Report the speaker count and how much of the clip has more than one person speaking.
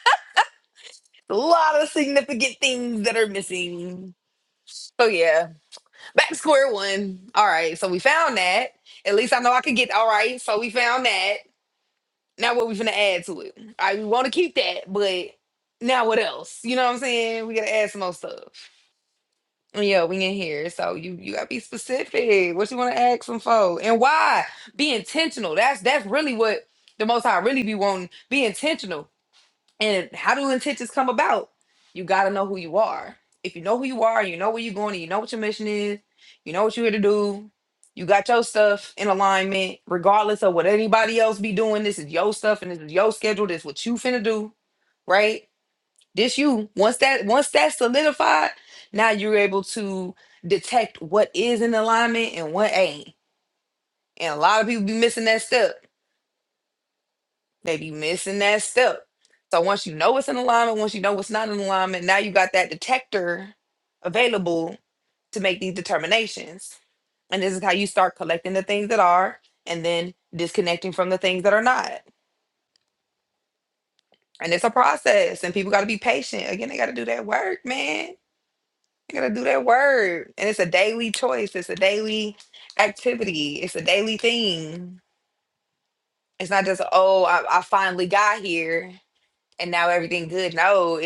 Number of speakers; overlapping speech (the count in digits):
1, no overlap